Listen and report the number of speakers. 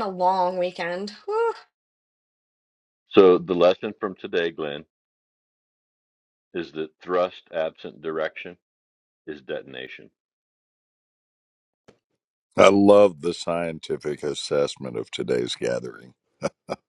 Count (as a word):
three